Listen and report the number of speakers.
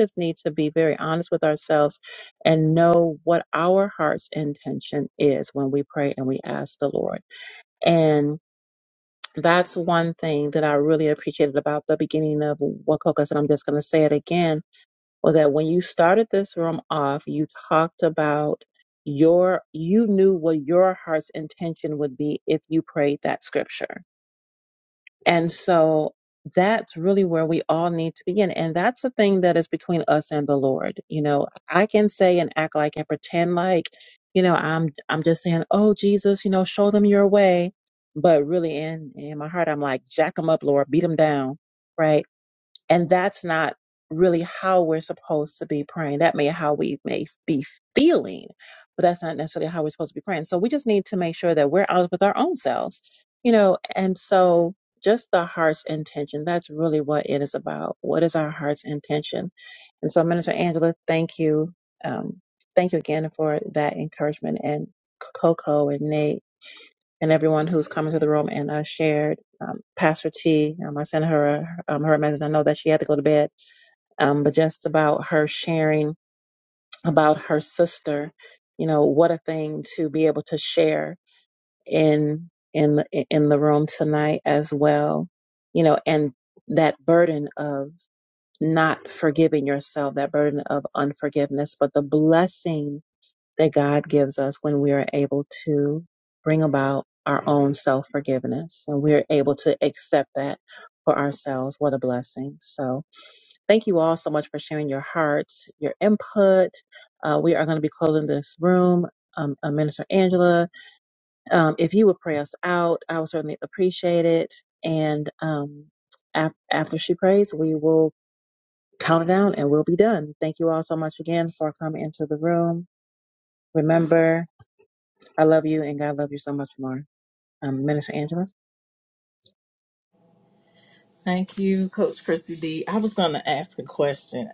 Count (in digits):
2